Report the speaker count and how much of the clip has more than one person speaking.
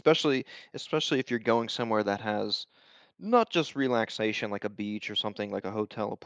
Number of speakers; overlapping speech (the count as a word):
one, no overlap